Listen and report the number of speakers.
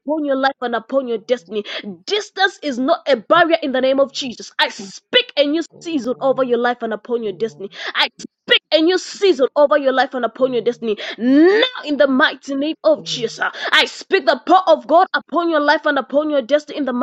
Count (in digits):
1